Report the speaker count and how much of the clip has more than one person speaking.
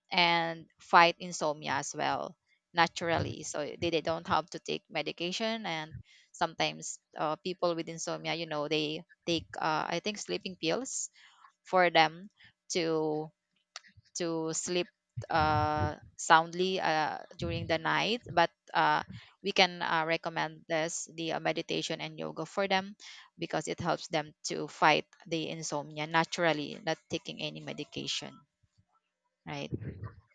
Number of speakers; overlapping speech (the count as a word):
one, no overlap